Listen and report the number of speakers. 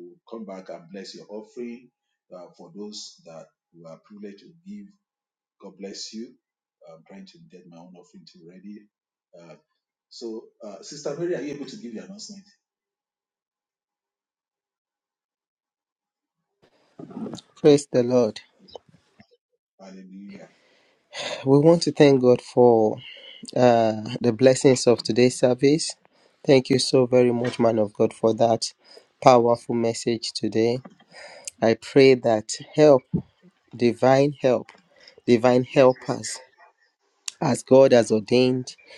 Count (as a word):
two